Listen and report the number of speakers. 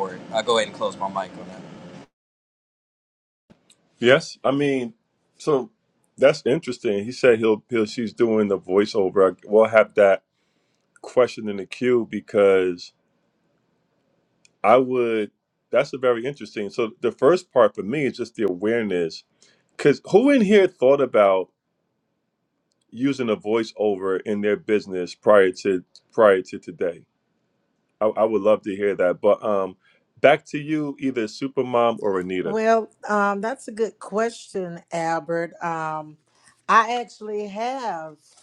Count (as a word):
three